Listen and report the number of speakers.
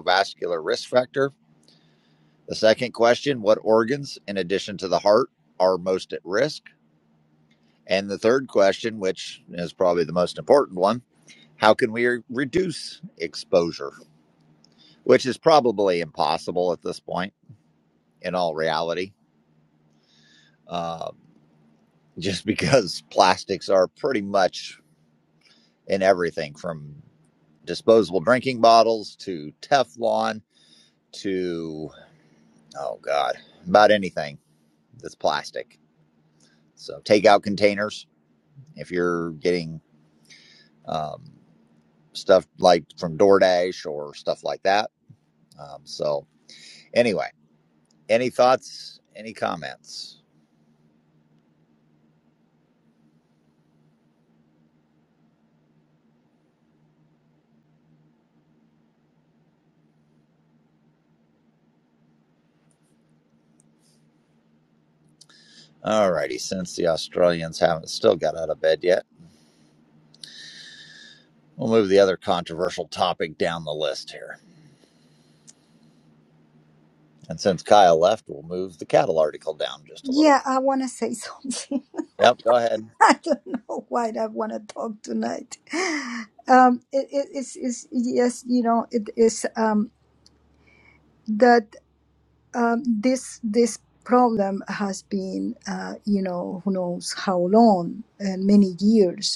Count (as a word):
two